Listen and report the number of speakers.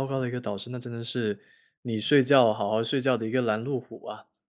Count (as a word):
one